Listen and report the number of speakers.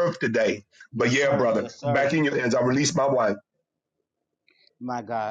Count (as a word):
two